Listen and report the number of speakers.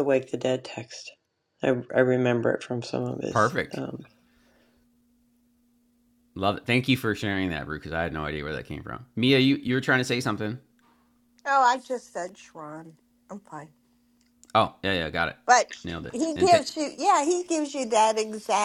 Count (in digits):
3